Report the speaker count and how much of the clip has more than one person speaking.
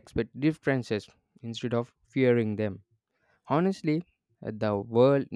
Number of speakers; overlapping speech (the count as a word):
one, no overlap